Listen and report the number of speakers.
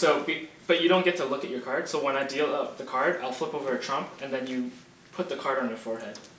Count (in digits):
1